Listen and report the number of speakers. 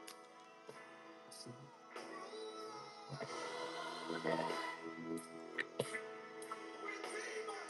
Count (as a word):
zero